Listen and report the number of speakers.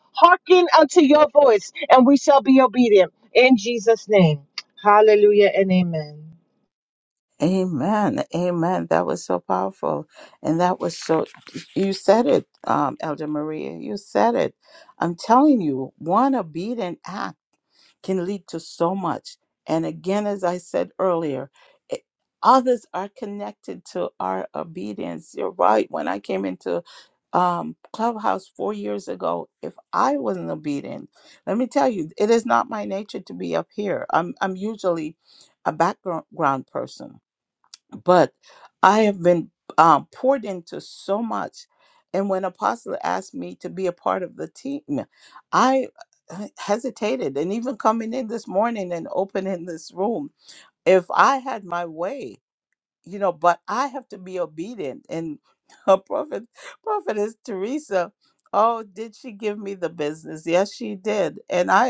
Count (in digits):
2